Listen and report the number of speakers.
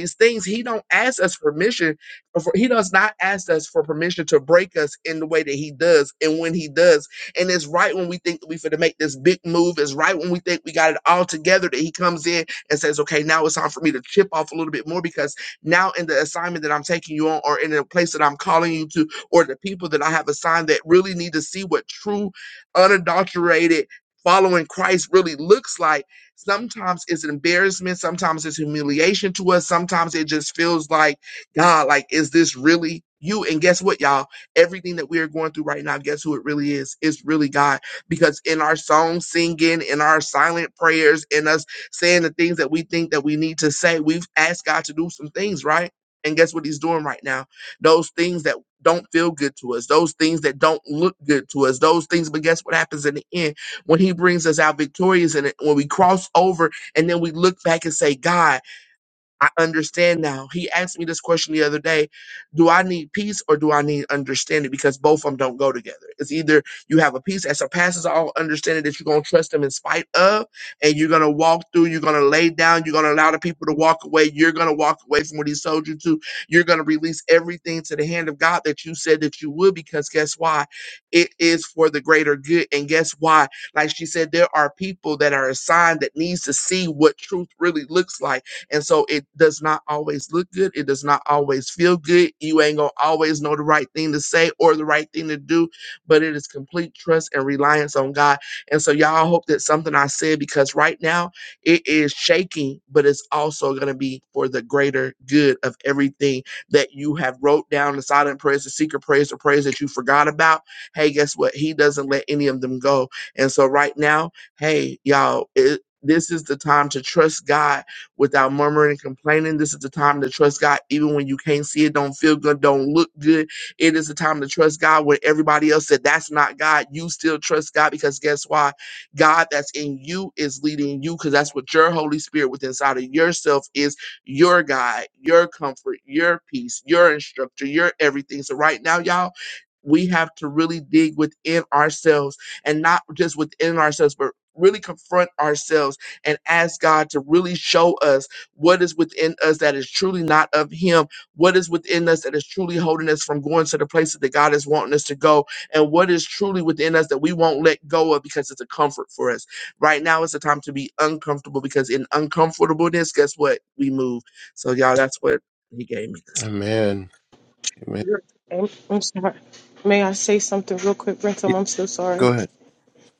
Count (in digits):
3